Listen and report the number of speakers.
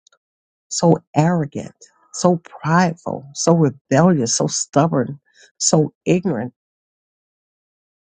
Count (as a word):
one